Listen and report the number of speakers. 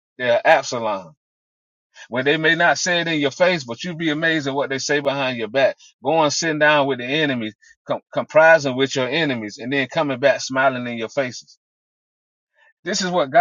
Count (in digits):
1